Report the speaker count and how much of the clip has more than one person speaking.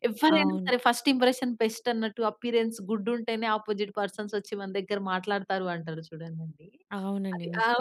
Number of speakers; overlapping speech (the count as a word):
two, about 11%